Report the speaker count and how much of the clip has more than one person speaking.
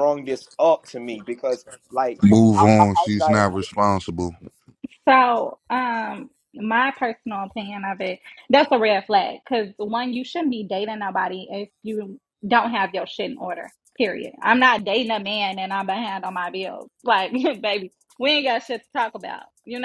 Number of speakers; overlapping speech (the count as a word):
three, about 4%